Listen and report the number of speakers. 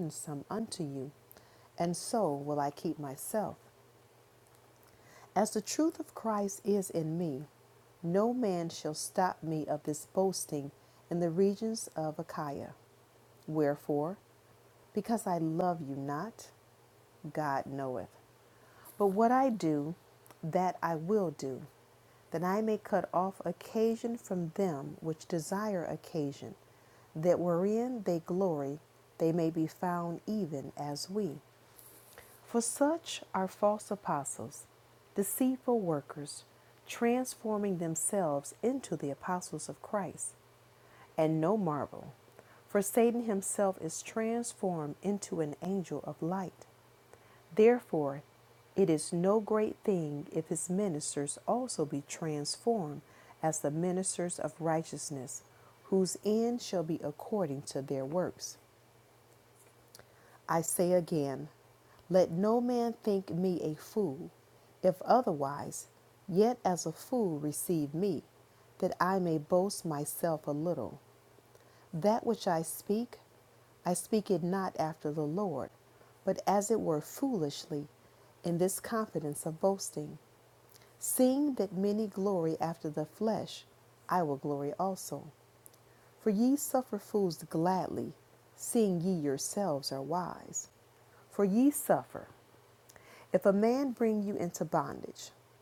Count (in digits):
1